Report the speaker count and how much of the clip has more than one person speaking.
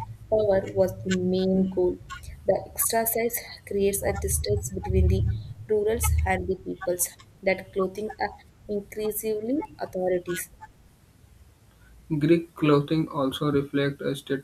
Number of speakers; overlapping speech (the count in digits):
2, no overlap